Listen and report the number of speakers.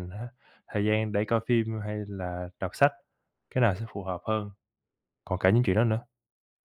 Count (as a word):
one